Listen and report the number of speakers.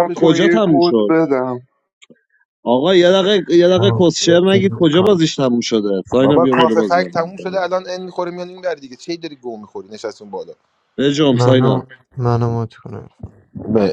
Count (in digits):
4